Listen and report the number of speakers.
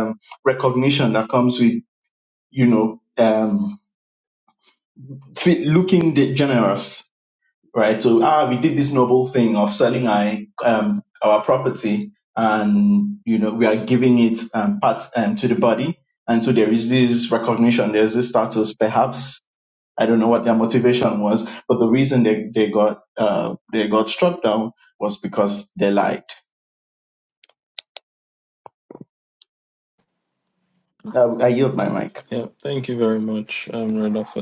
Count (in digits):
2